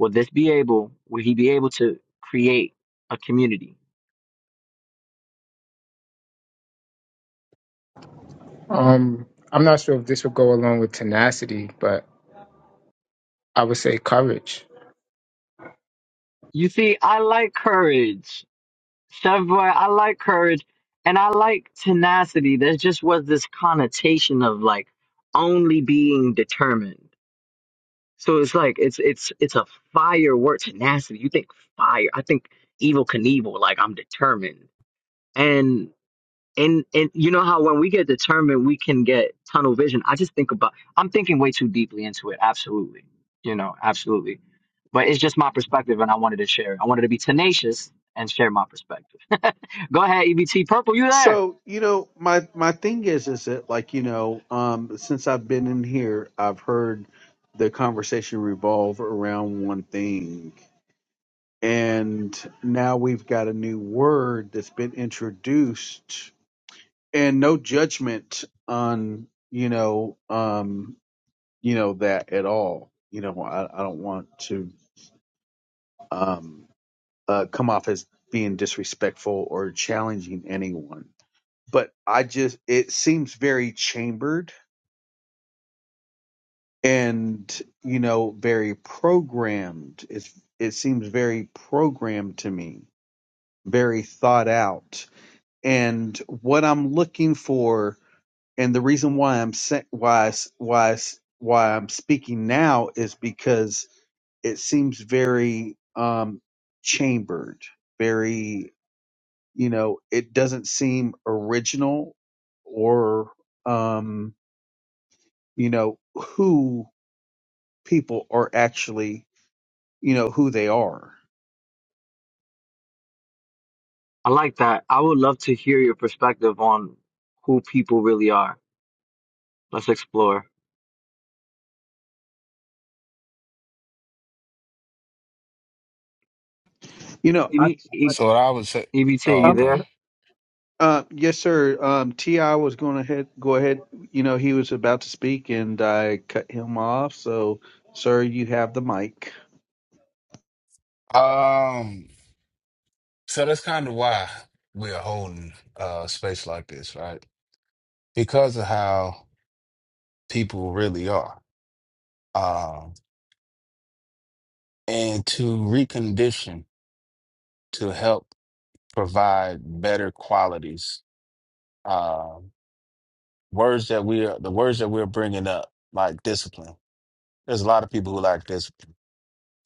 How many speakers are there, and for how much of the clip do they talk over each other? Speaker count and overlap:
4, under 1%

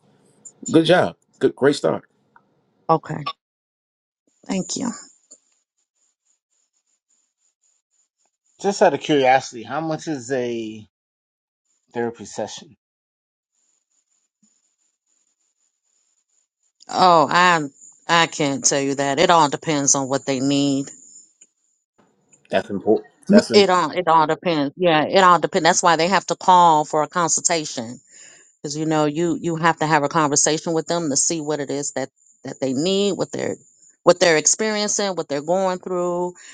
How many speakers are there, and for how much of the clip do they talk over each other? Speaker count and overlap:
3, under 1%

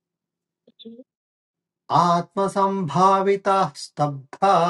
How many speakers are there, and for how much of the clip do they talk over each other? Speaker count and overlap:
1, no overlap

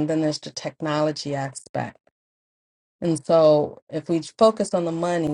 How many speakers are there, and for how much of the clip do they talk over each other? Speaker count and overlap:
1, no overlap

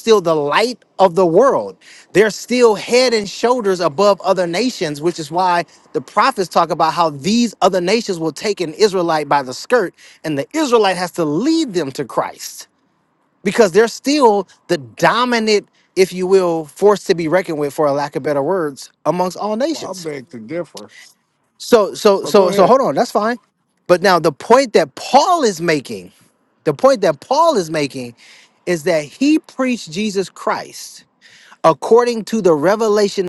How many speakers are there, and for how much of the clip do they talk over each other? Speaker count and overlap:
2, about 2%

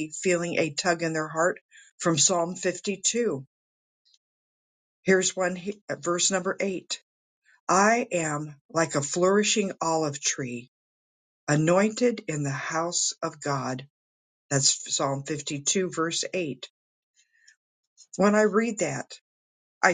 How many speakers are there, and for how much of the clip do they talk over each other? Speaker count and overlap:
1, no overlap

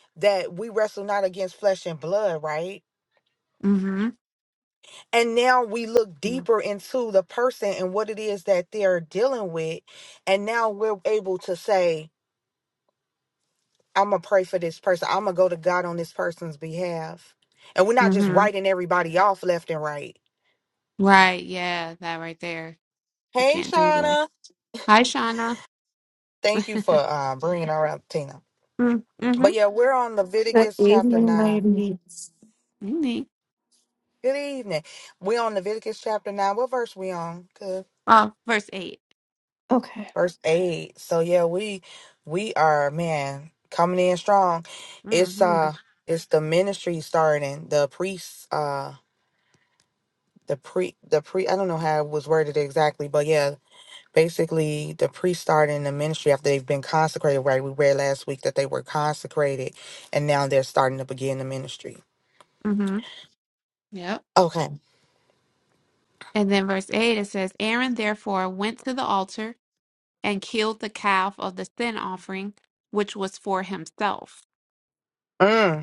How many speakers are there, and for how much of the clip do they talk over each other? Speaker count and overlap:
3, about 4%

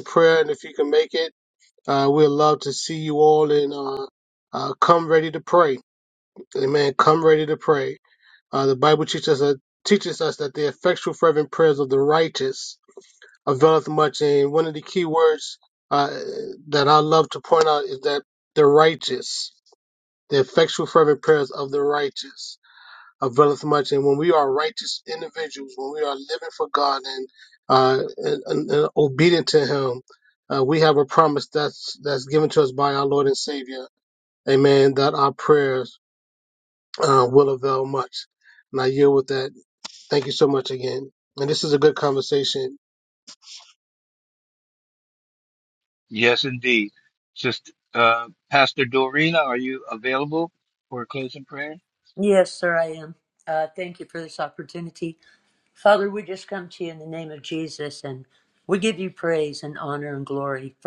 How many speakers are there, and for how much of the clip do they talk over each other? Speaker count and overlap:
3, no overlap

